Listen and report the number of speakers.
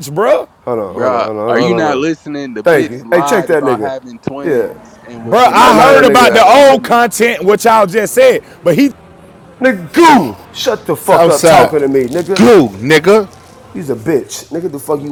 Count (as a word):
four